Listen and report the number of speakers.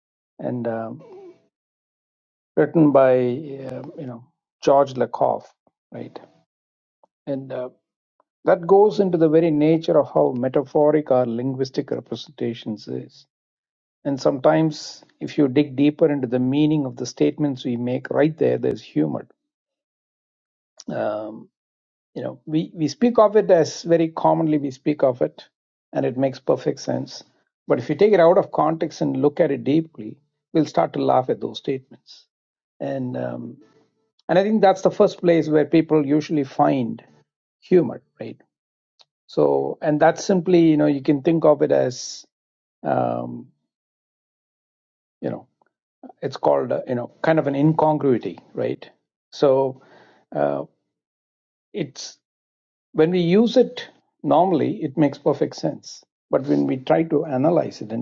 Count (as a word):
one